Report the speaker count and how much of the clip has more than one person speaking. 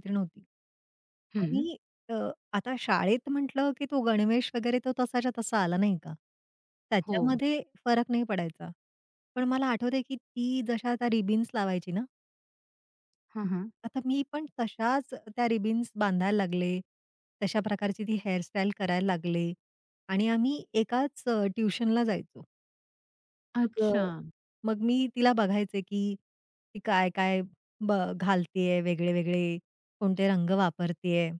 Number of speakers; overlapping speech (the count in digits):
2, about 3%